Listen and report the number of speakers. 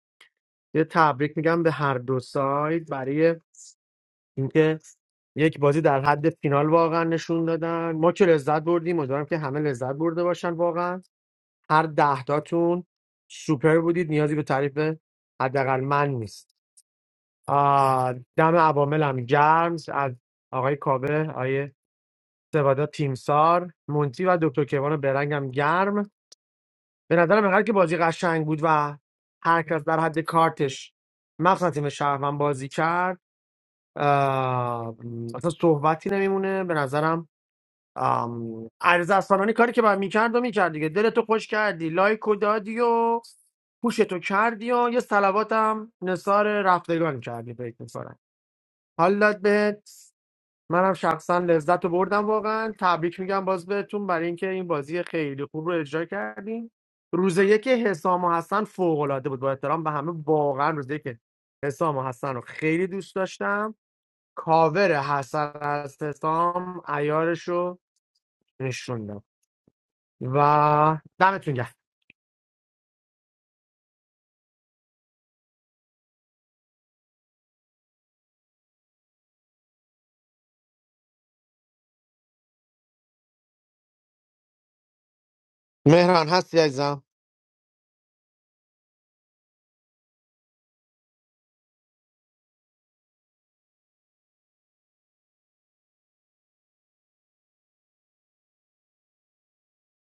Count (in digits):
1